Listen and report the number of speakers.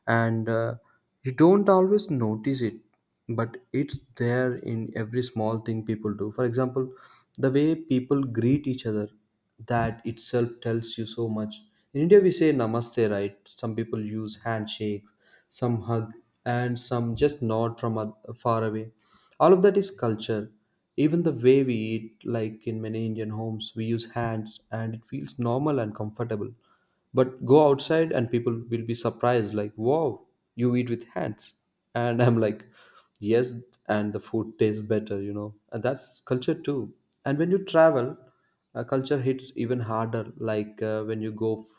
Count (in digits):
1